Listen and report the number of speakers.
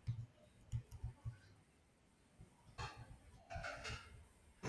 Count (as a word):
zero